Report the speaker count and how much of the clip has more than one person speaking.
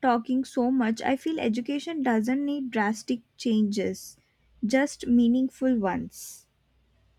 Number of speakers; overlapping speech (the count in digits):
1, no overlap